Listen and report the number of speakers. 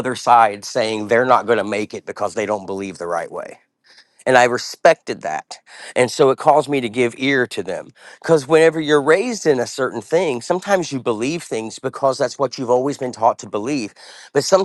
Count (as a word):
one